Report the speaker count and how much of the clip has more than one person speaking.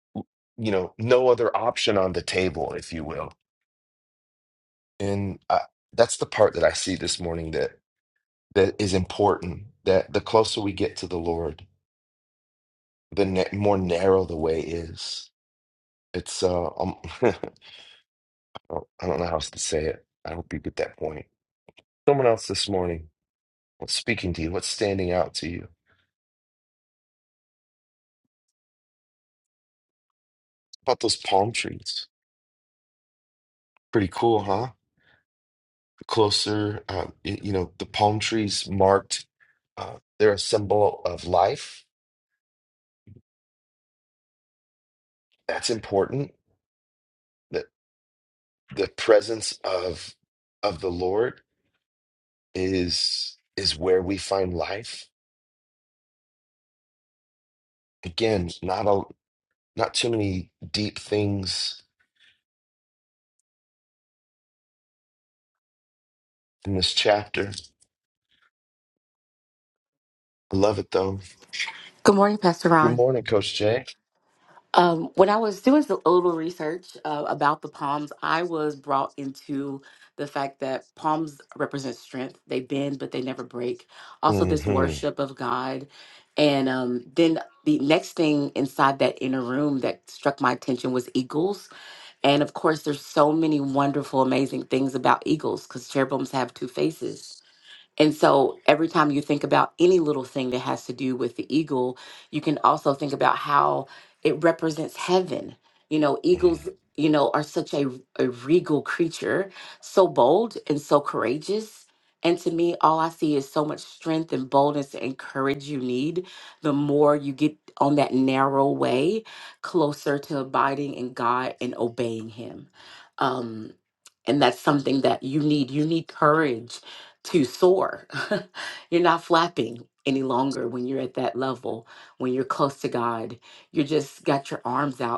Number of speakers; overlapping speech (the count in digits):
2, about 1%